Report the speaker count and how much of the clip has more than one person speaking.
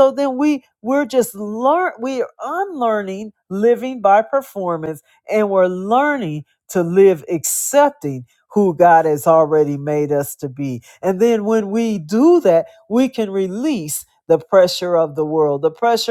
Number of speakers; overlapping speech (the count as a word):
one, no overlap